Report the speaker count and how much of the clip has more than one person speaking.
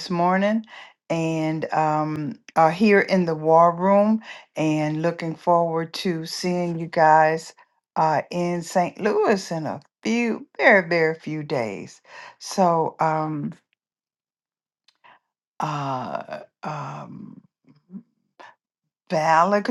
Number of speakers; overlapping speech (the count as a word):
one, no overlap